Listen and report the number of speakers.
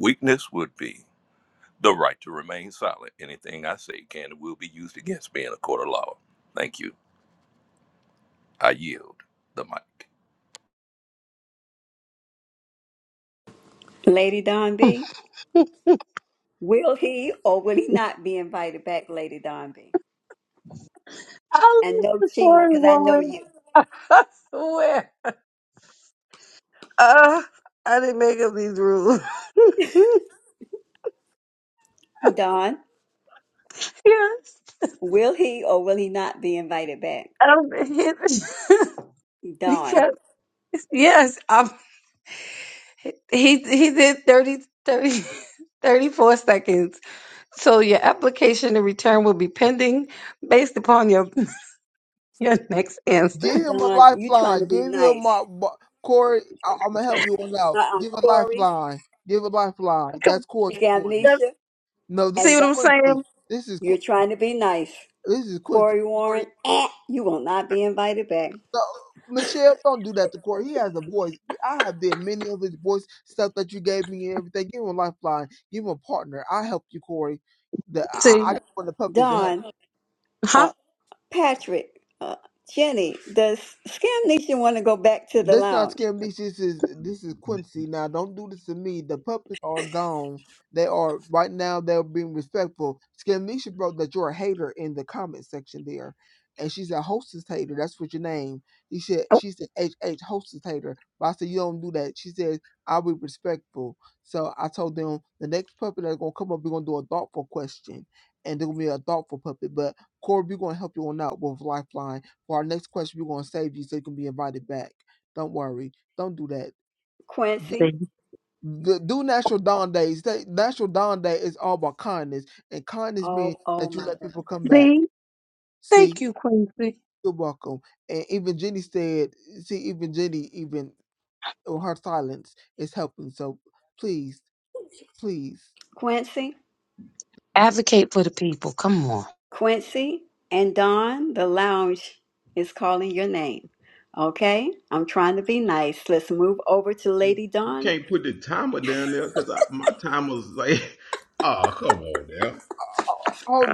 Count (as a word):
five